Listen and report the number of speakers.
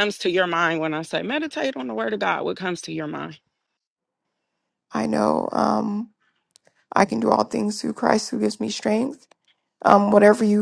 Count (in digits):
2